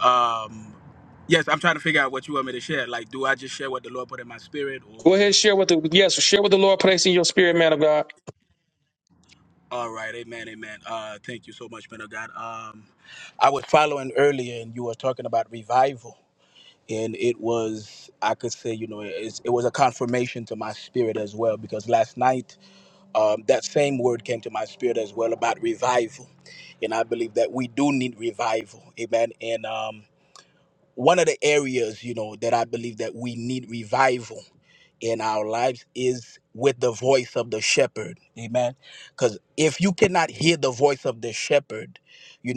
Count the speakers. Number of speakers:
two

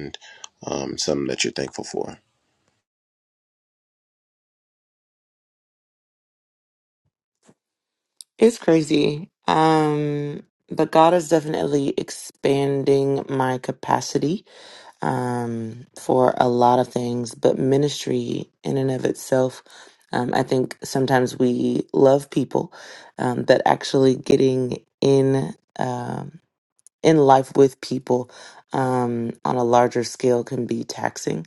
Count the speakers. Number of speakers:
two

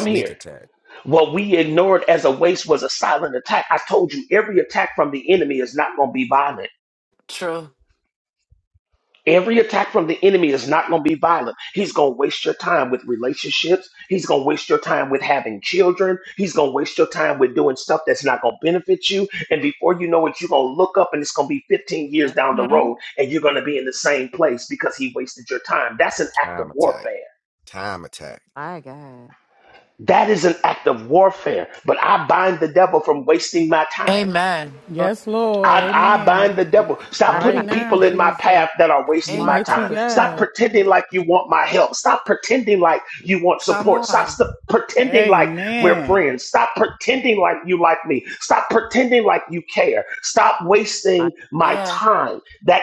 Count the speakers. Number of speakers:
five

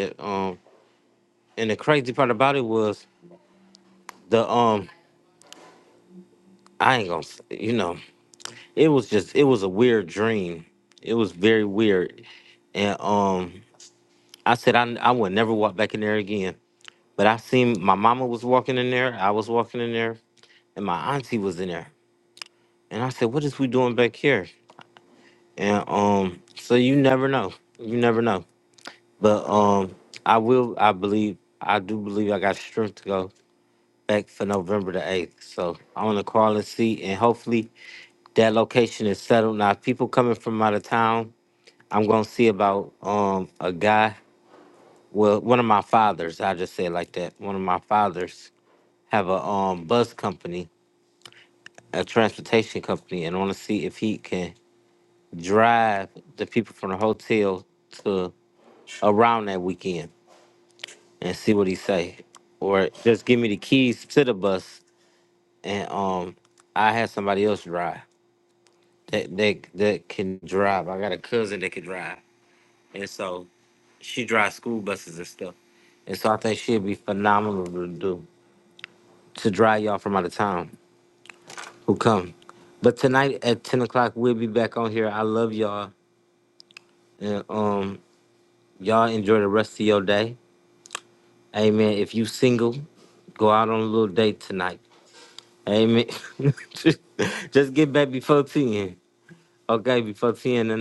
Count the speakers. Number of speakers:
one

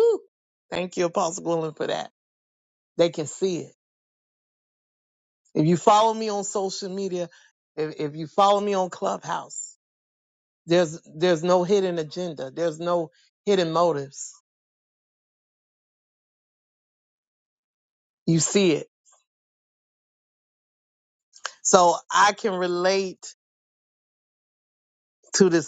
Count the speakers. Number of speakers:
one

